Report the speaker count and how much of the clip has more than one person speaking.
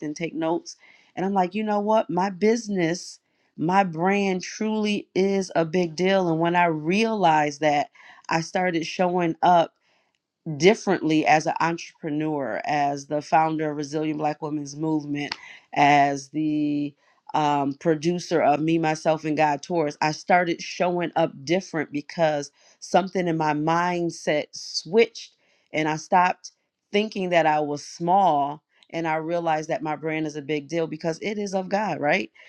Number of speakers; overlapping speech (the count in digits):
1, no overlap